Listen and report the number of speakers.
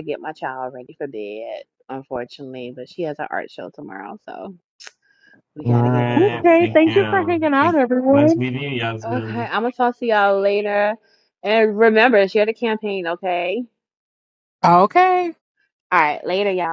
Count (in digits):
3